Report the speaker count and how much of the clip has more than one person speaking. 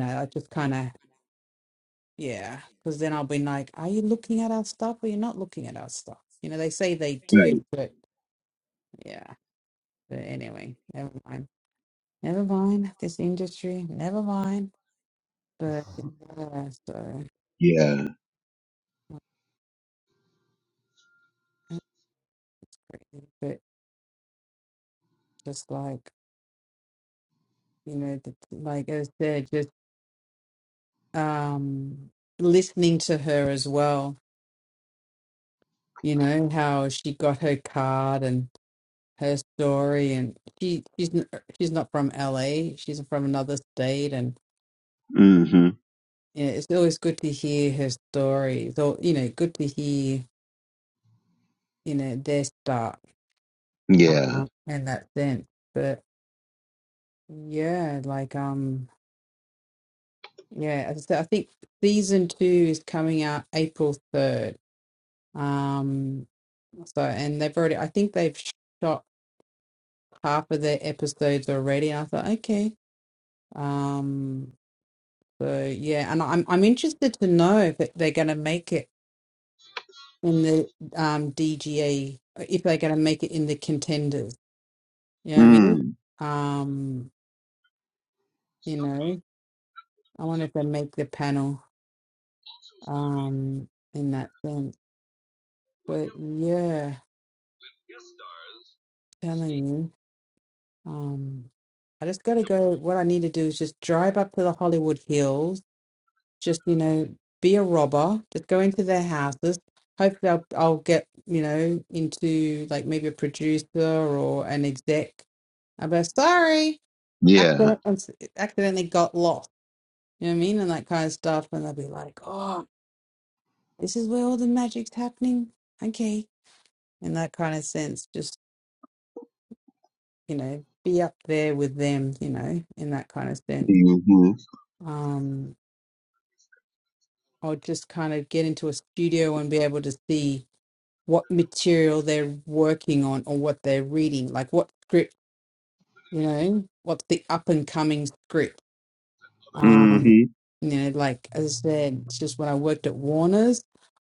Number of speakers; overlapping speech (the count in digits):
2, about 1%